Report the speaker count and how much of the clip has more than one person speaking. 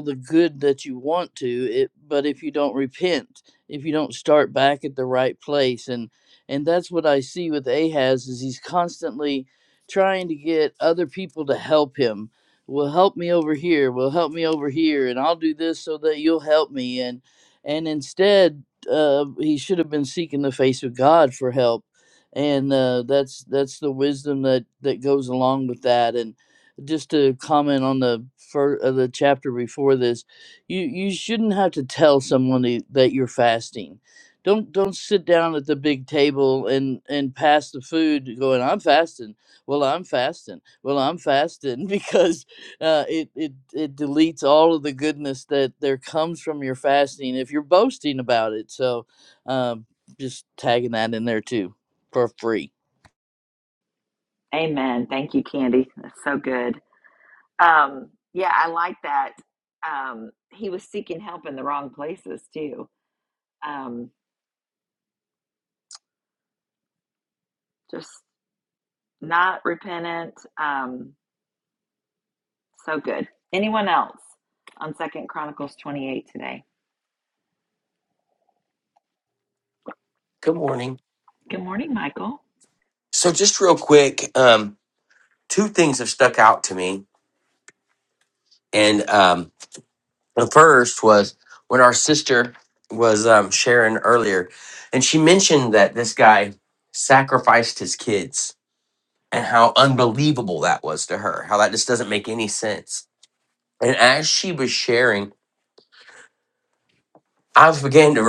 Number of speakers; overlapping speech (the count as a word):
three, no overlap